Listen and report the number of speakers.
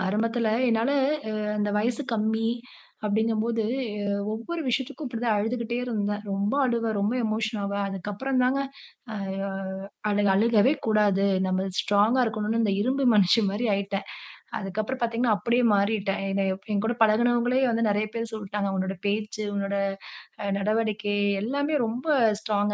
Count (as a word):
one